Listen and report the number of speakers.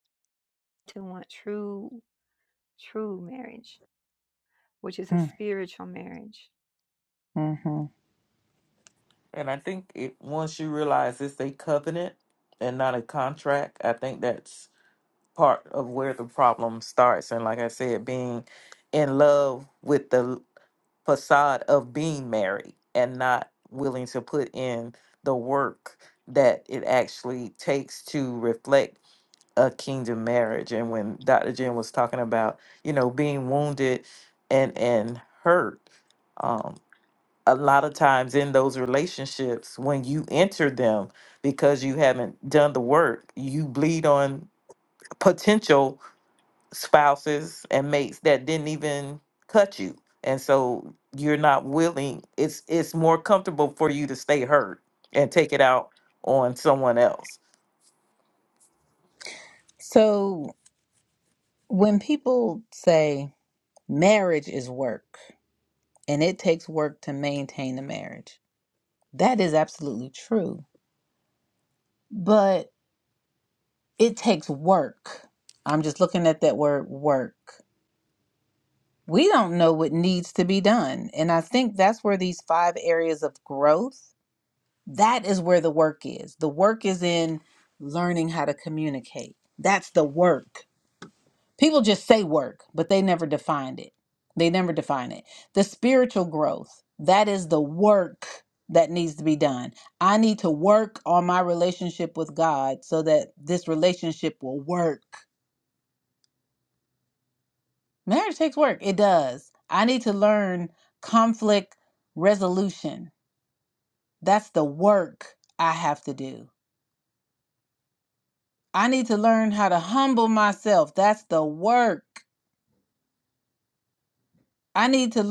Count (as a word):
three